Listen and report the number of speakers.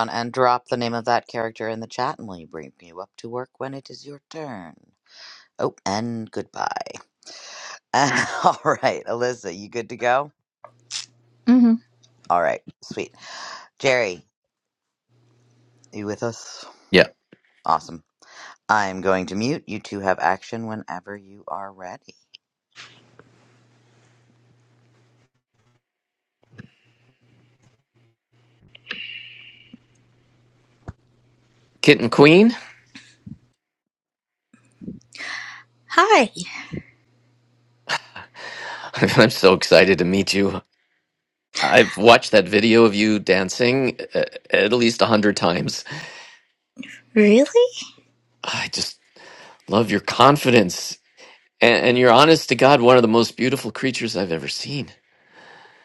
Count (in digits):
3